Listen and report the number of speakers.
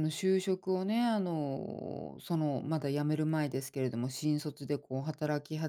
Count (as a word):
one